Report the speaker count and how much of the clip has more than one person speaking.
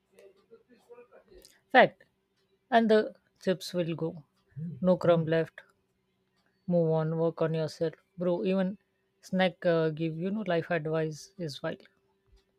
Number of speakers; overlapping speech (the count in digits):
1, no overlap